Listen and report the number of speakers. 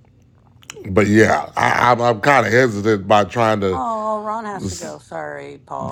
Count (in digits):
2